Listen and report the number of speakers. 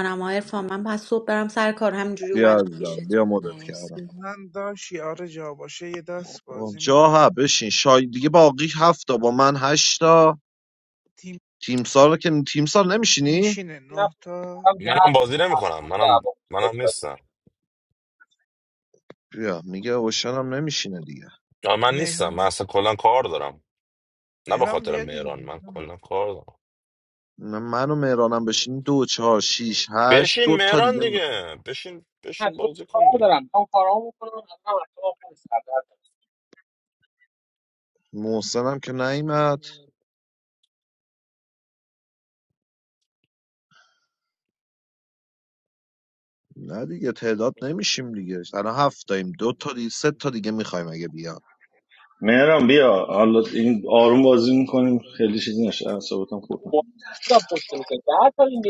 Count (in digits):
6